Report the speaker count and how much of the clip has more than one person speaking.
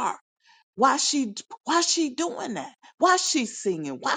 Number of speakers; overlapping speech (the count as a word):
one, no overlap